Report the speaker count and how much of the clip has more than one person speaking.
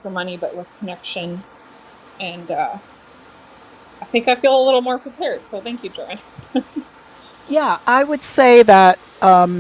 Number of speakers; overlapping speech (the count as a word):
two, no overlap